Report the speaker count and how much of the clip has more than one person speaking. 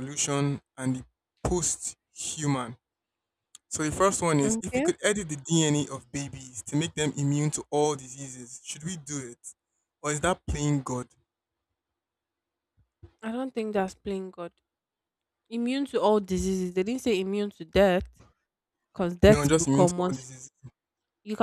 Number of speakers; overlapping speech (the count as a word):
two, about 6%